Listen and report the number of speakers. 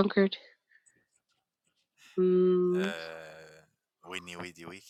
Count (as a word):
two